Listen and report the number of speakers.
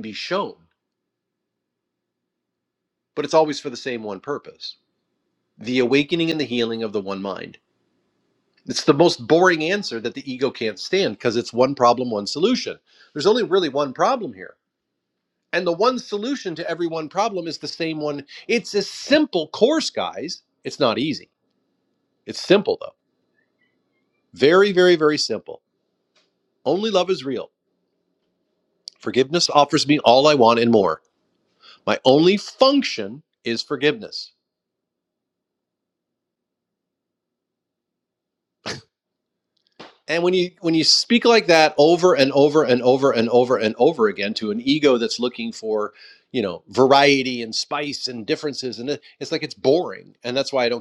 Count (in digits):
1